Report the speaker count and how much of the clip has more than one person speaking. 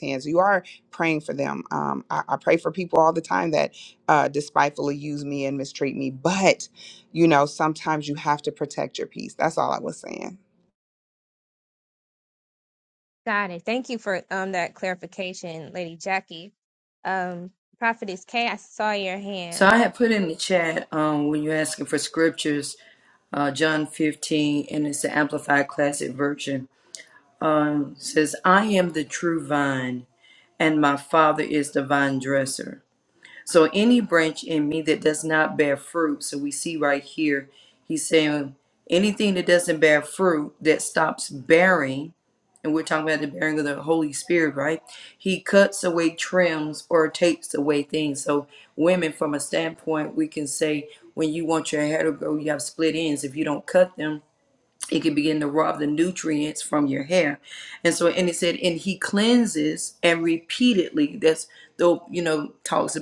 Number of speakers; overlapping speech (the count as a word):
three, under 1%